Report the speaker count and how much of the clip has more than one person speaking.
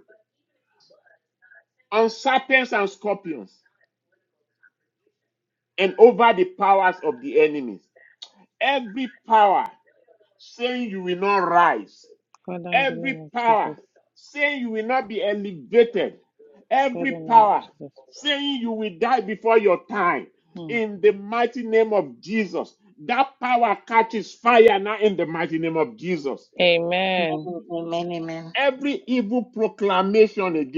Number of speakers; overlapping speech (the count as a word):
three, about 7%